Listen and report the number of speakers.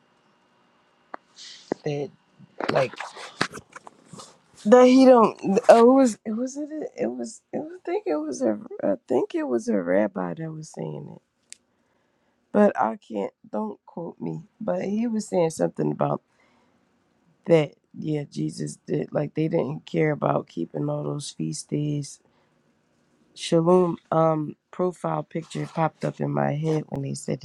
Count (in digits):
1